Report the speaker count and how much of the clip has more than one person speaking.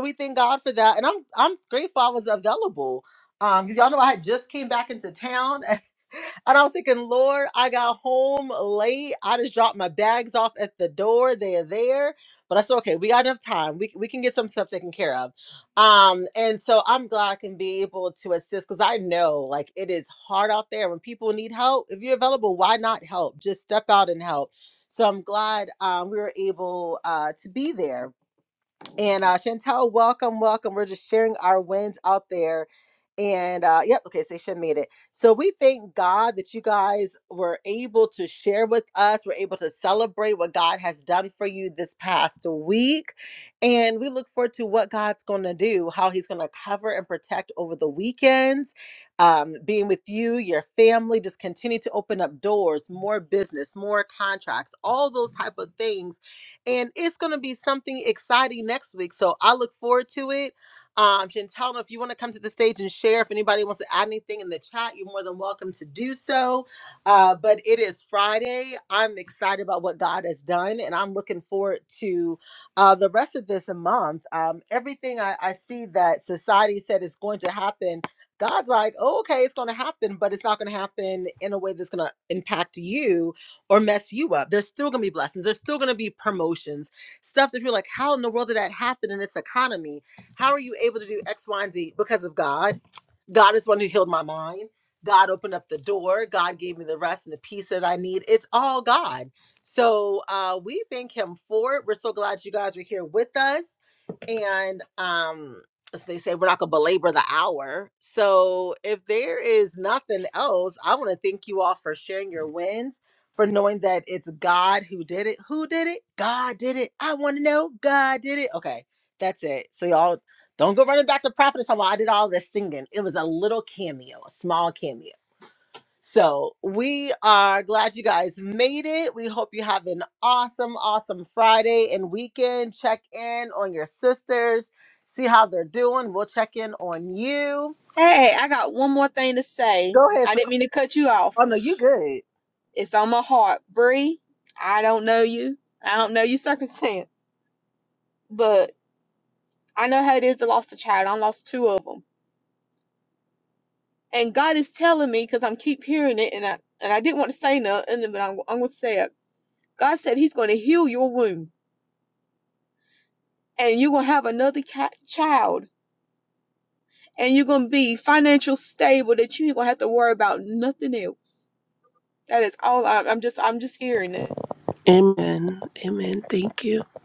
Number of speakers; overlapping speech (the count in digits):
3, under 1%